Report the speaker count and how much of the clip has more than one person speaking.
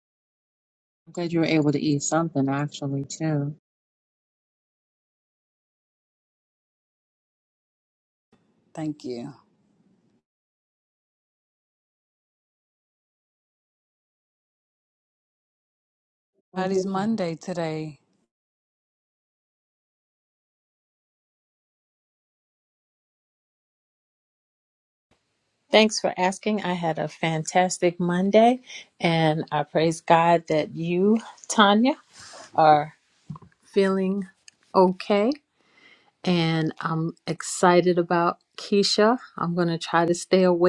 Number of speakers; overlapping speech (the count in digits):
3, no overlap